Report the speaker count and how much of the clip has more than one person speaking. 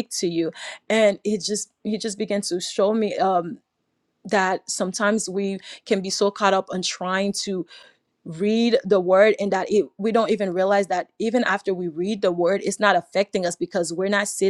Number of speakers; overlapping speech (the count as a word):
one, no overlap